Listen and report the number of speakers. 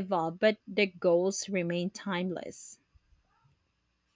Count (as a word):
one